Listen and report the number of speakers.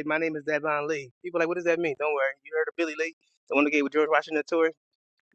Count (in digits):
1